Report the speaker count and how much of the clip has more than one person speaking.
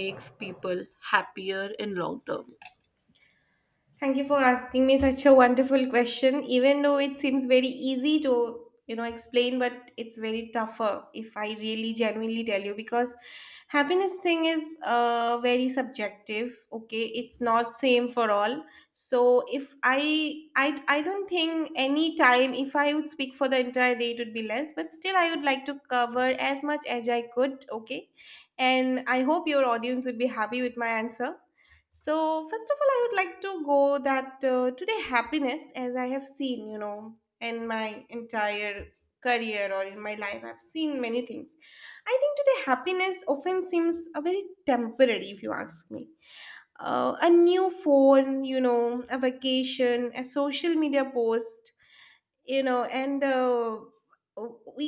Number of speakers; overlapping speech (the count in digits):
2, no overlap